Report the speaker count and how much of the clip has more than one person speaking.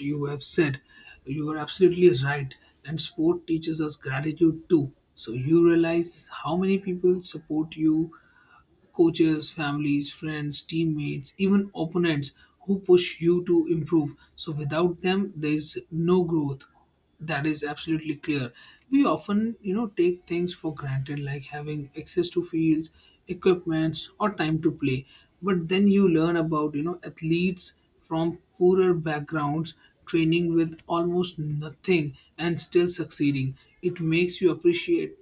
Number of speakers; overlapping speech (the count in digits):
1, no overlap